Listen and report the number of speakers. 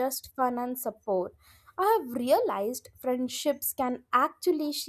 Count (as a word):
one